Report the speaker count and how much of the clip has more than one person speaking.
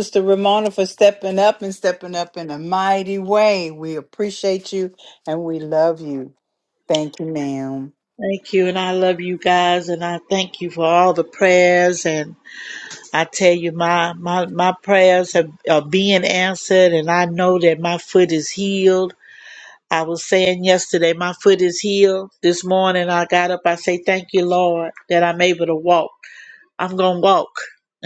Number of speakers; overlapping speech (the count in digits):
2, no overlap